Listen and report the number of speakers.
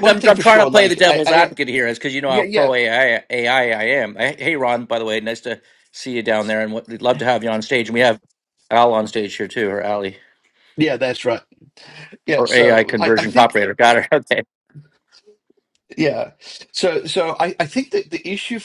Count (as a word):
two